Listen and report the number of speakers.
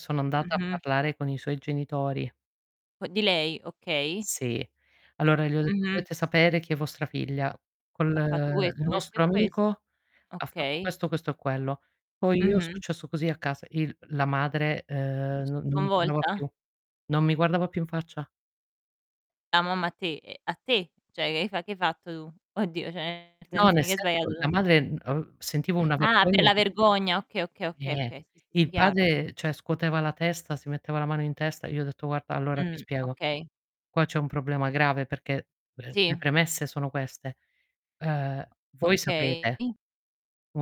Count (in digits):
2